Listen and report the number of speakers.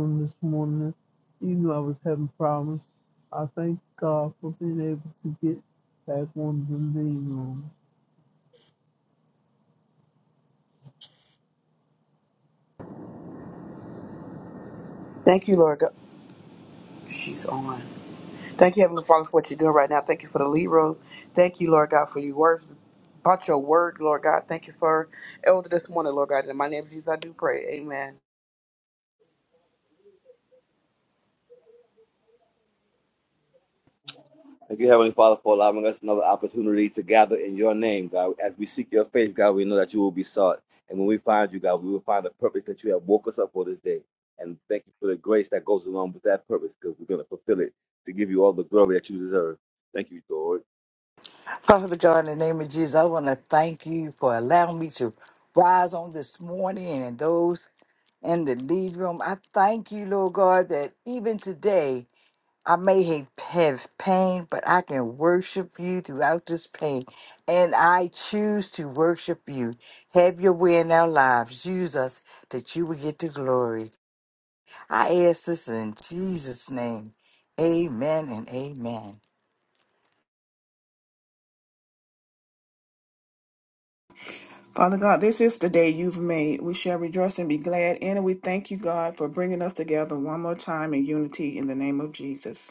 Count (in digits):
5